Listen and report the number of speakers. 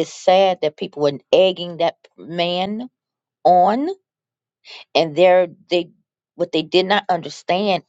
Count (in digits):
1